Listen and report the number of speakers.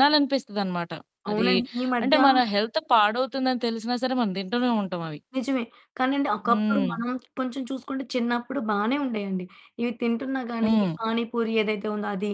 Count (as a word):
two